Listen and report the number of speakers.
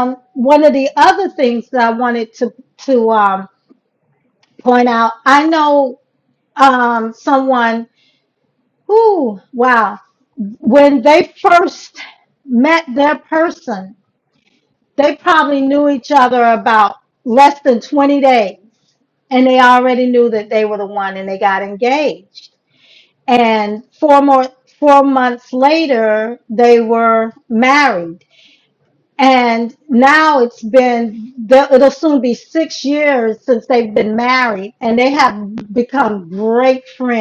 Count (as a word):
one